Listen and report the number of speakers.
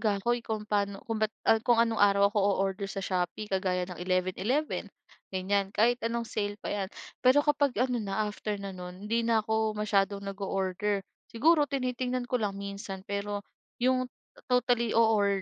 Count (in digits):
1